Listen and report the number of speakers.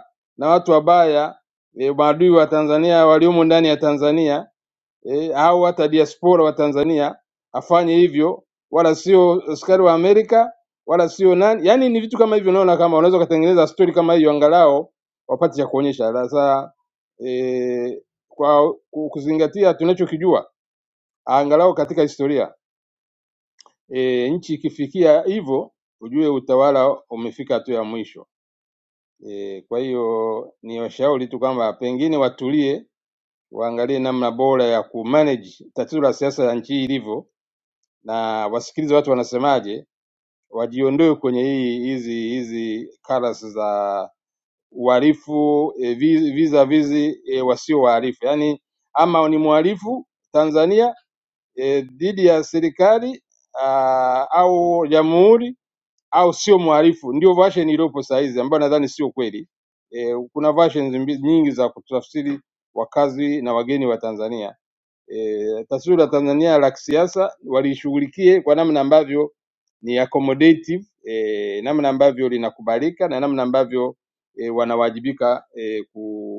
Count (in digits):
1